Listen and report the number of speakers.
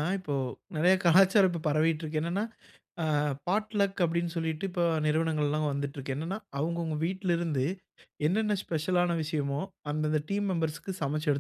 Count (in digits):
1